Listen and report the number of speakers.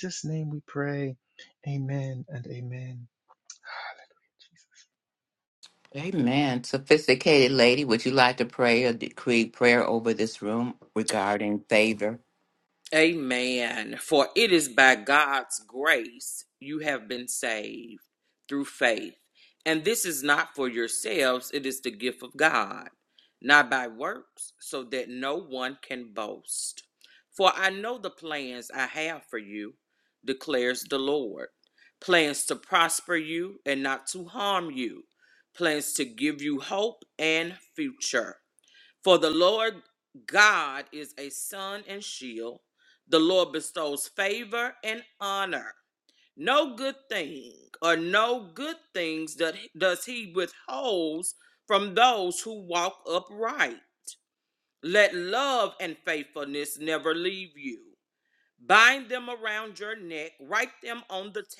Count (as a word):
three